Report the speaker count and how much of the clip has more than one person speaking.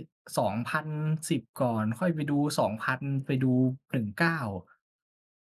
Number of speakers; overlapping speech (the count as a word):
one, no overlap